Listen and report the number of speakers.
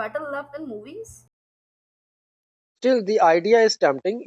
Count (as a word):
two